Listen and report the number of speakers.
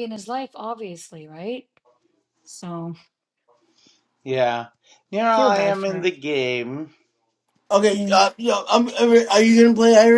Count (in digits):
3